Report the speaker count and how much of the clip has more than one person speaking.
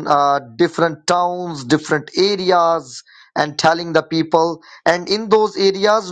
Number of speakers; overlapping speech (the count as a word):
one, no overlap